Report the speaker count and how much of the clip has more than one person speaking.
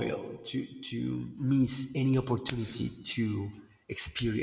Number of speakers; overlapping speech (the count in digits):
1, no overlap